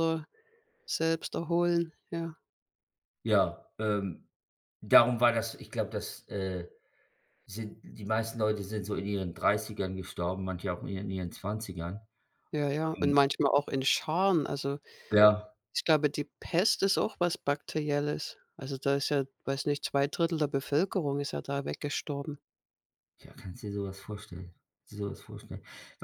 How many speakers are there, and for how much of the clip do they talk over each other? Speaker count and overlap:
two, about 1%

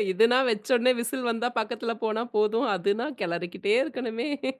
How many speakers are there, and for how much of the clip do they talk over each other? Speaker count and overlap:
one, no overlap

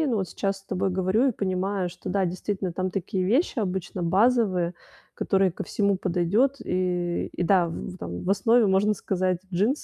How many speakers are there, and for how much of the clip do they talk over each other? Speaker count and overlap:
one, no overlap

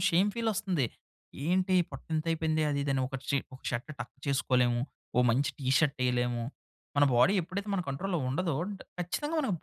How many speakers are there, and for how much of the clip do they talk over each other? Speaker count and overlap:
one, no overlap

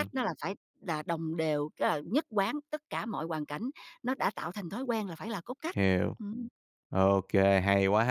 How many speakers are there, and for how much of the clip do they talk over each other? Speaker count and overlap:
two, about 1%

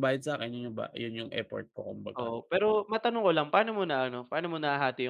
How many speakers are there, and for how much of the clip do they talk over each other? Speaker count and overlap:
two, about 3%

